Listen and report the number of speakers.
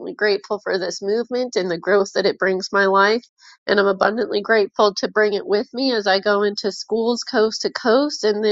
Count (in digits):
1